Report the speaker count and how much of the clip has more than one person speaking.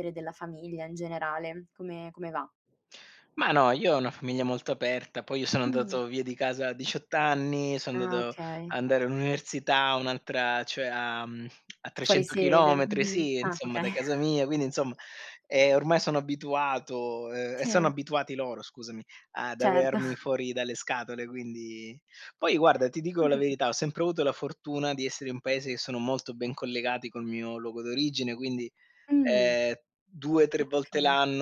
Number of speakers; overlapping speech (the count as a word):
two, about 16%